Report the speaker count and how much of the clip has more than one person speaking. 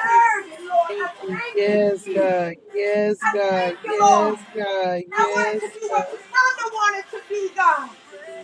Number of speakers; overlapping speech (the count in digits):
2, about 45%